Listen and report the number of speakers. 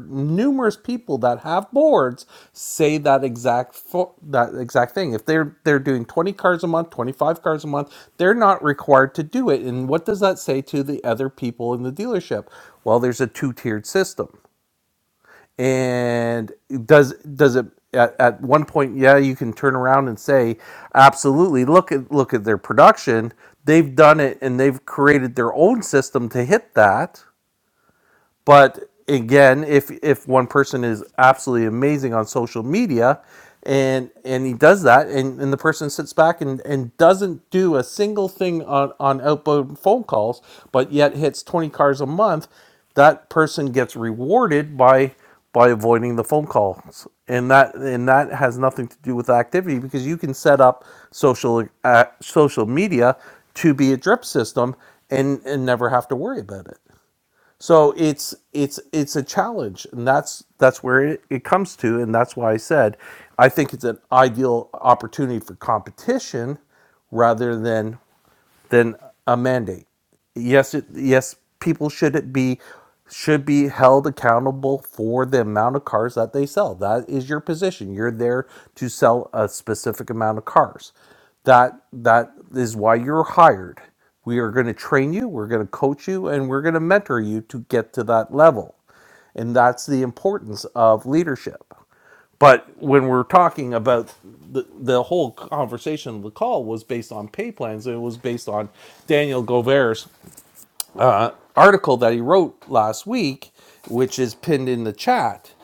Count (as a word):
one